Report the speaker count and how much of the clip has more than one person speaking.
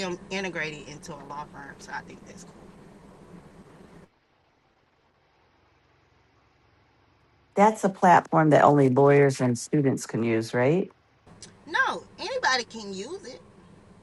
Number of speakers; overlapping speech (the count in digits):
2, no overlap